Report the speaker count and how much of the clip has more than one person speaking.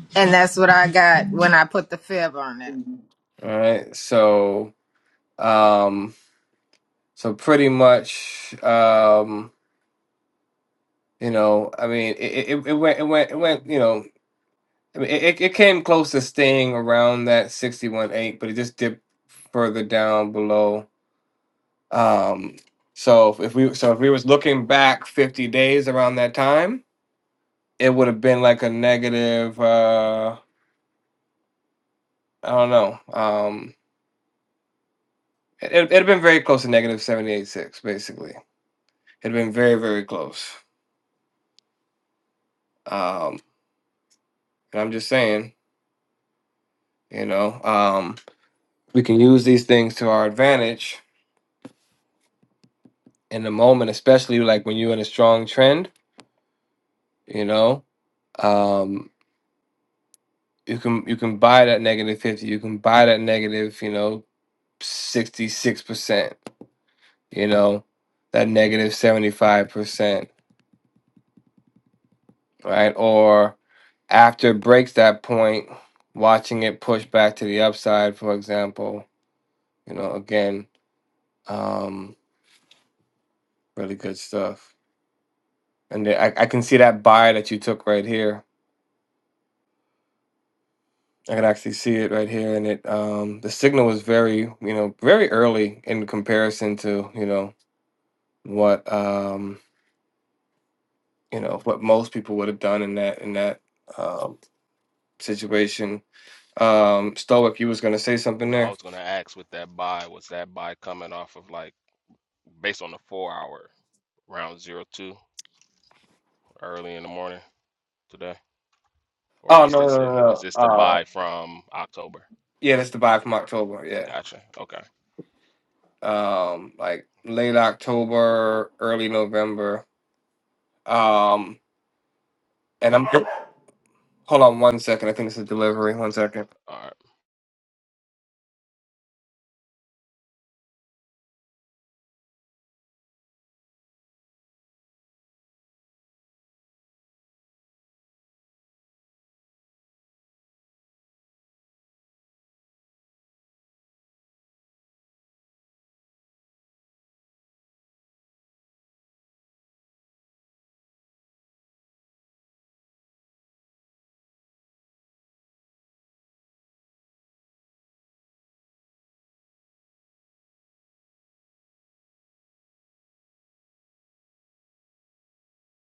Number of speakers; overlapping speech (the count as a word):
three, about 1%